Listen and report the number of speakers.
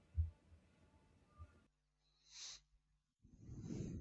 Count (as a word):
zero